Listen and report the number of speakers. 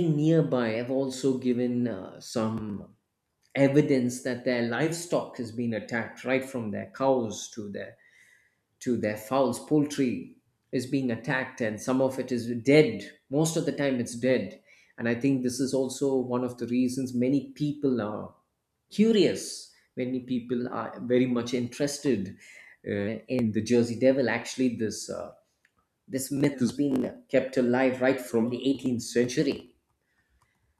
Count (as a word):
one